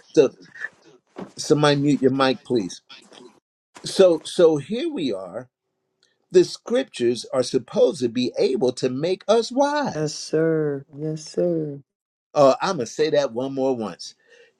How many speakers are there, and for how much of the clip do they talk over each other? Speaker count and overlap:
2, about 1%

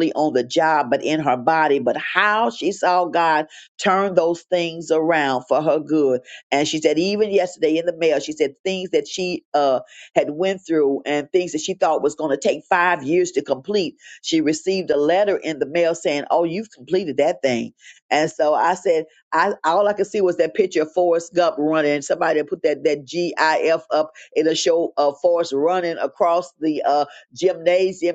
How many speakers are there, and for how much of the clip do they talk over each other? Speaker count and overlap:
1, no overlap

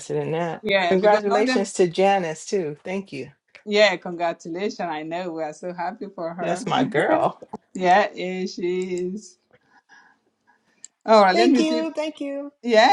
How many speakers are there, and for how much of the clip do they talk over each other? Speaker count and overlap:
3, about 14%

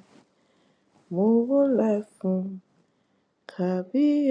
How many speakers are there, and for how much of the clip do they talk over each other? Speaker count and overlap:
1, no overlap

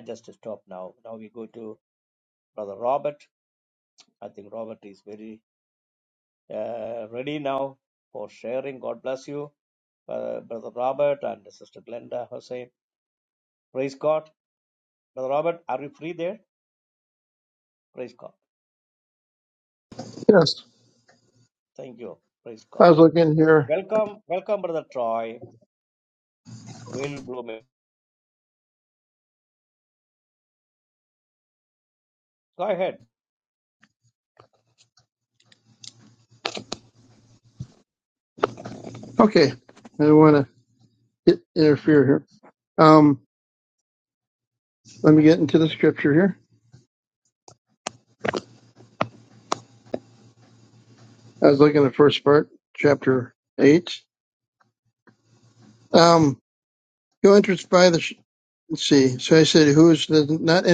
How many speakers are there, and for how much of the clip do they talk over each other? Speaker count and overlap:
2, under 1%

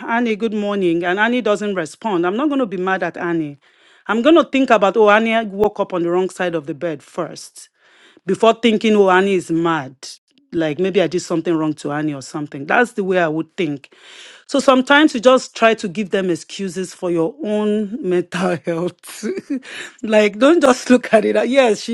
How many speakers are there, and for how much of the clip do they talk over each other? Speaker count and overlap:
1, no overlap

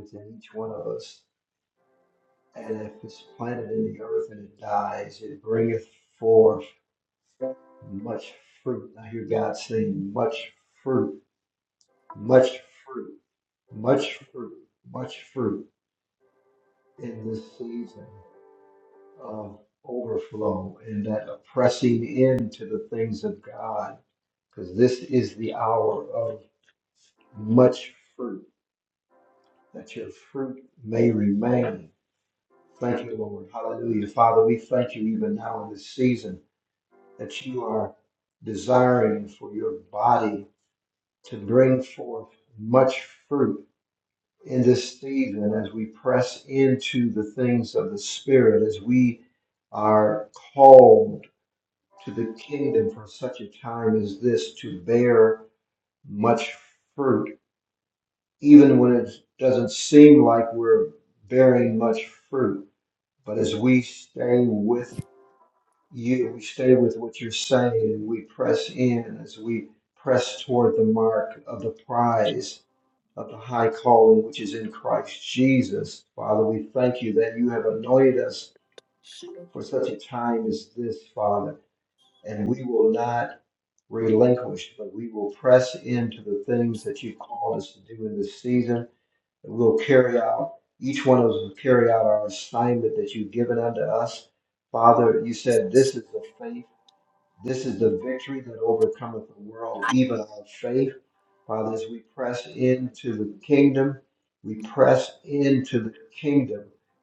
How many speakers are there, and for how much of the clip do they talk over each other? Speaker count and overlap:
1, no overlap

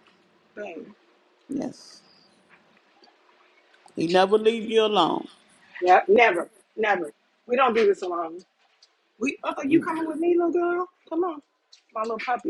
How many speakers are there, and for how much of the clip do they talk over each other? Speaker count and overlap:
2, no overlap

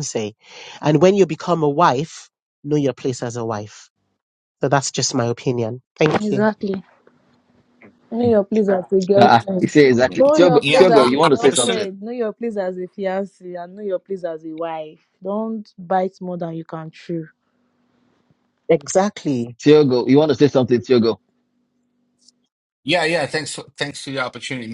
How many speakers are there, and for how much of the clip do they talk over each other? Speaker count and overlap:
4, about 10%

